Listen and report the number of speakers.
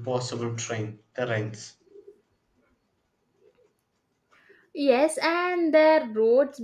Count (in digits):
2